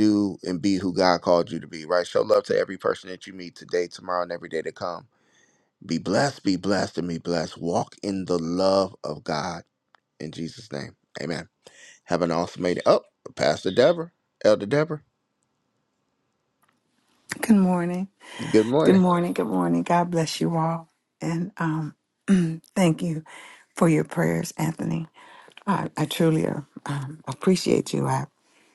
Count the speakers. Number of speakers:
2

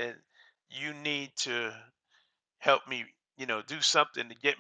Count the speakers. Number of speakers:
1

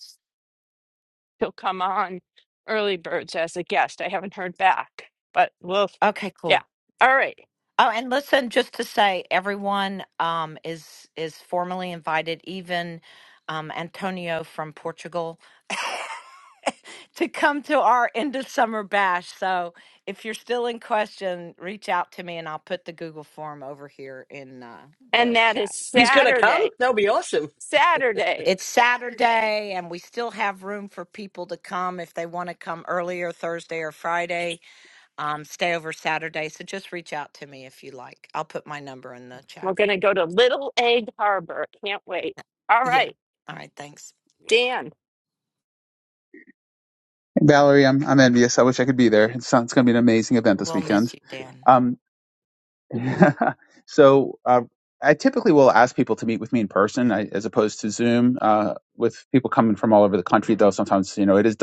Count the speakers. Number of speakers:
4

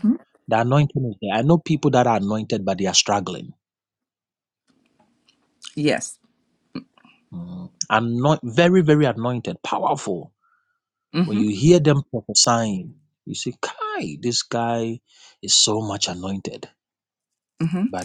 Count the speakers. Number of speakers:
2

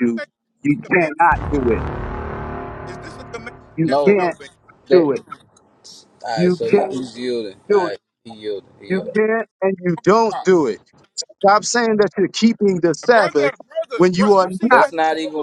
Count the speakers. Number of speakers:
3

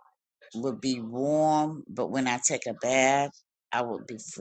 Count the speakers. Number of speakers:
1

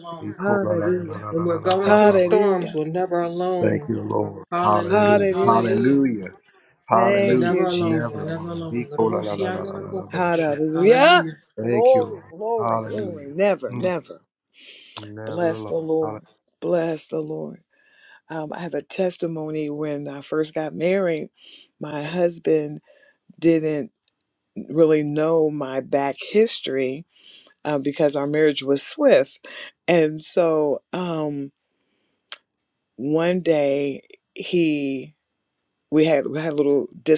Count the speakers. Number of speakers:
3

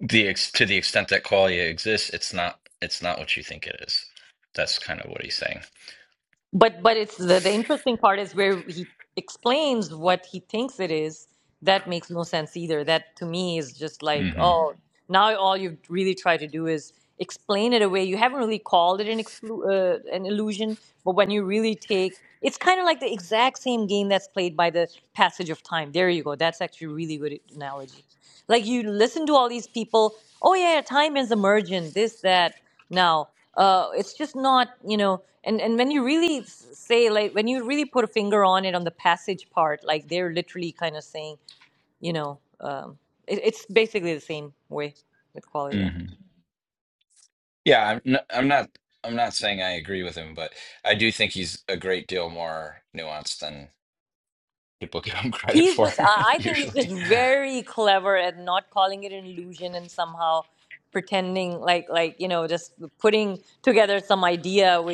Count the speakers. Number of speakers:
2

